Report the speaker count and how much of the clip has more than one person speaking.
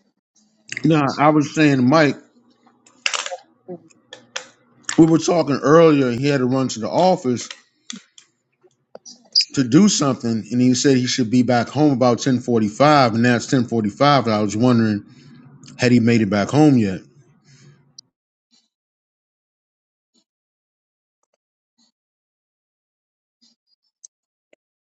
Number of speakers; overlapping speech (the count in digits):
1, no overlap